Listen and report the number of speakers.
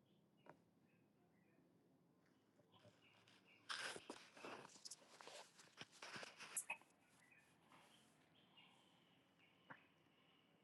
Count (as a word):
zero